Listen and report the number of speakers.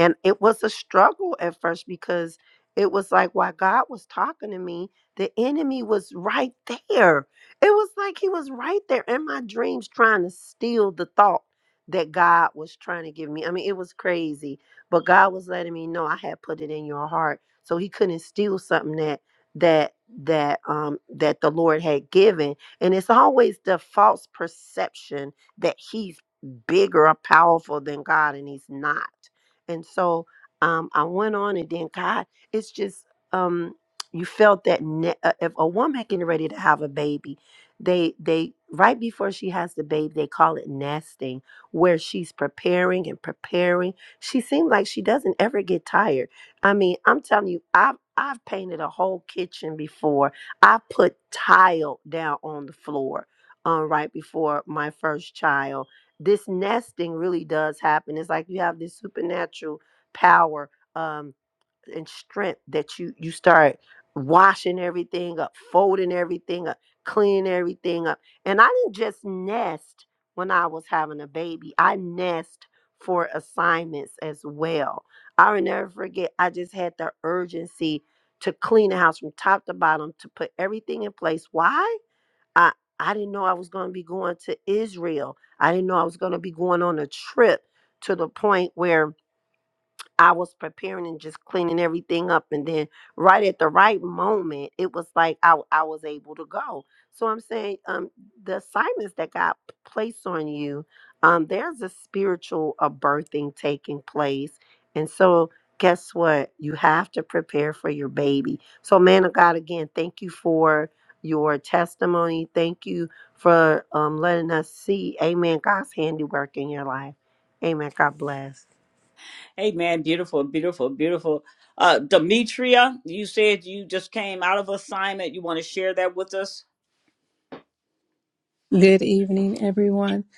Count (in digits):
3